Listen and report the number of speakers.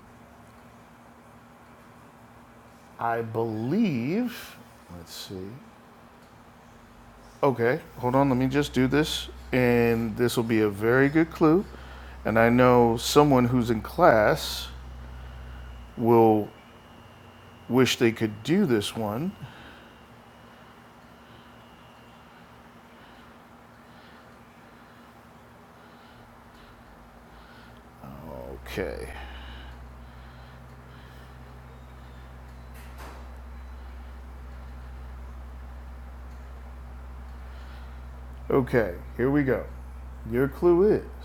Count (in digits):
1